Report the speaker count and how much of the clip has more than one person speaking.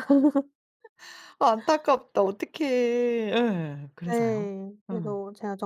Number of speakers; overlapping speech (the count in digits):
2, about 11%